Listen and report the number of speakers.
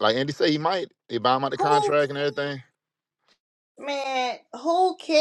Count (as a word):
two